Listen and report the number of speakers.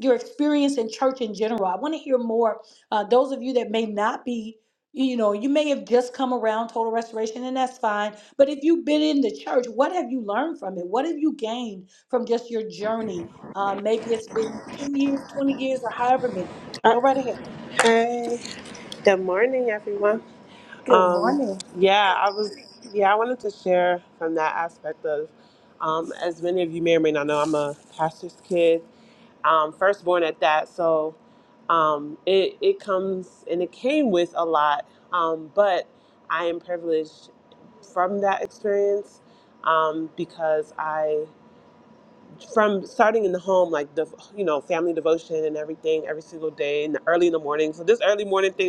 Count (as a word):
two